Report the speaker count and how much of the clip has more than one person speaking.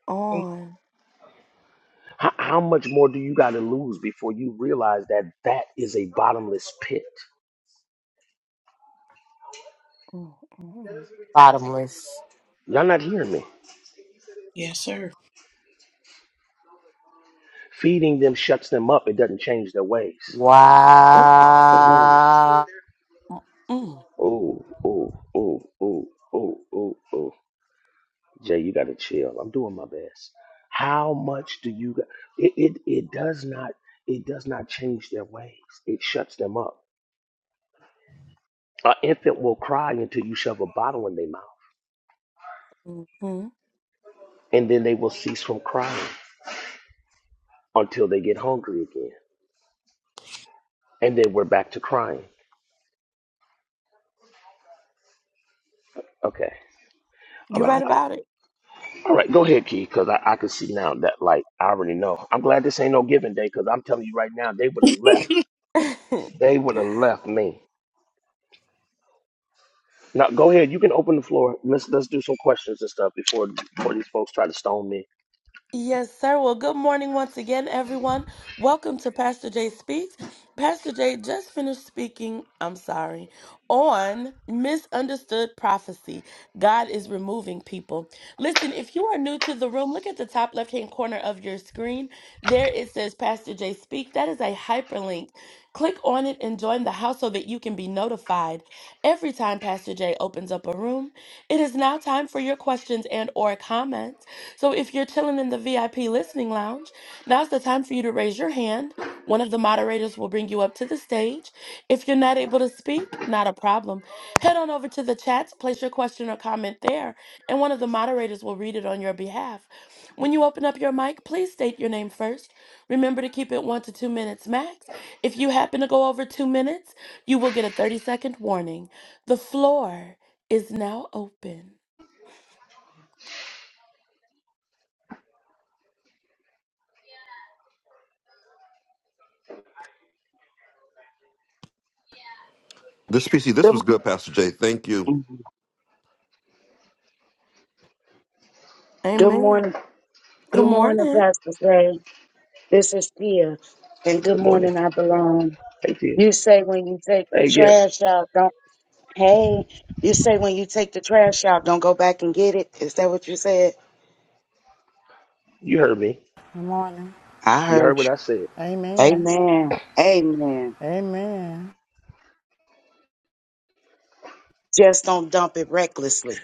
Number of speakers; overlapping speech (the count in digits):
7, about 2%